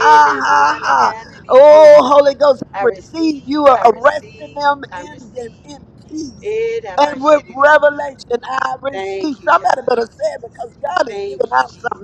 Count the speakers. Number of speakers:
2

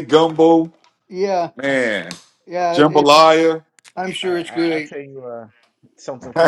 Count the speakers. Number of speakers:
3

